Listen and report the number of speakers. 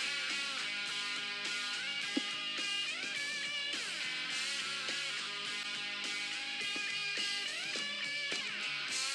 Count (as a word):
zero